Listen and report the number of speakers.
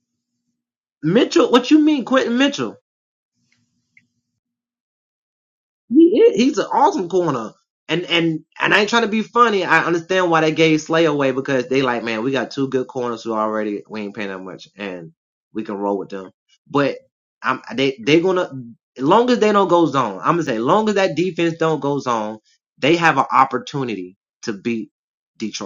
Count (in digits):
1